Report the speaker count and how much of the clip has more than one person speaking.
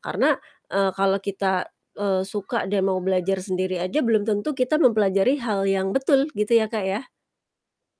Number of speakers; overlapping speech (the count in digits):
1, no overlap